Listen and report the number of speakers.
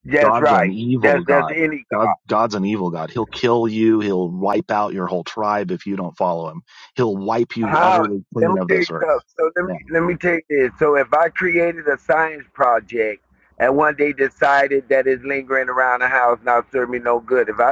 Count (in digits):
2